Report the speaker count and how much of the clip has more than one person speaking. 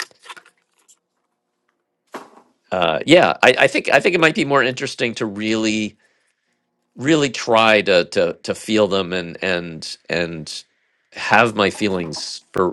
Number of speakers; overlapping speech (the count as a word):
one, no overlap